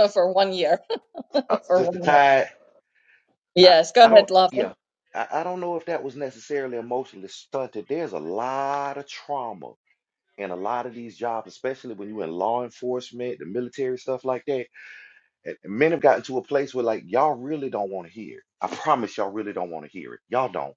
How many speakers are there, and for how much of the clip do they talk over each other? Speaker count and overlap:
2, about 7%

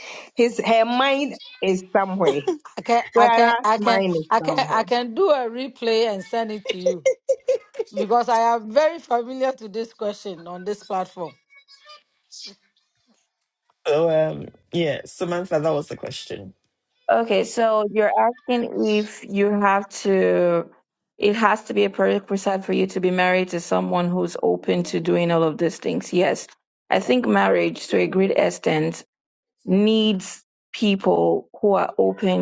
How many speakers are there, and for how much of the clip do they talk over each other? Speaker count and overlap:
4, about 5%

